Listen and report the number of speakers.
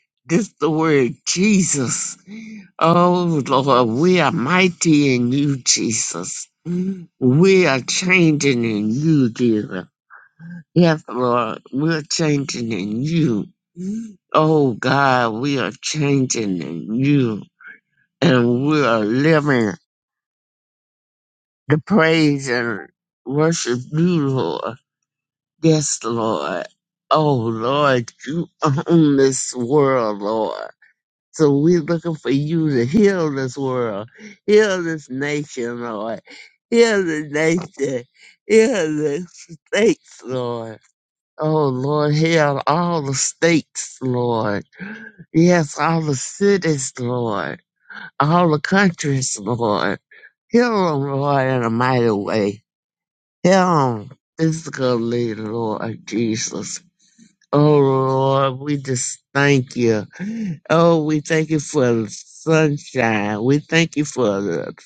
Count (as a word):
one